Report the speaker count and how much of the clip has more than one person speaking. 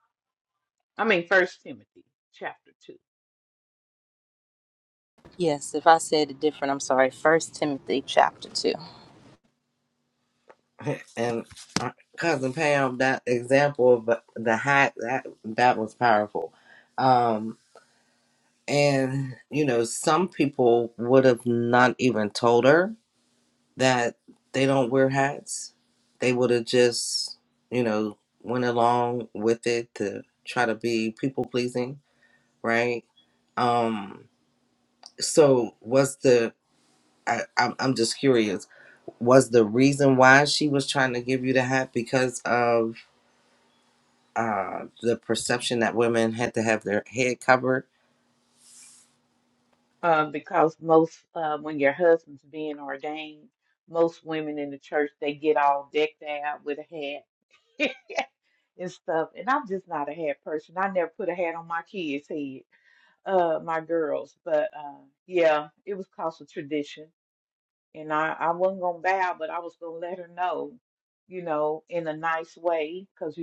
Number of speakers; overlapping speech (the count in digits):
3, no overlap